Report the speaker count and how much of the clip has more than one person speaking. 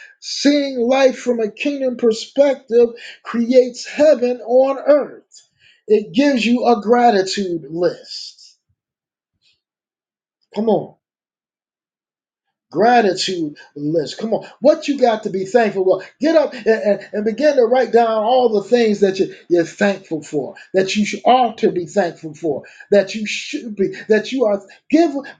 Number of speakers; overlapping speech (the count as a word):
one, no overlap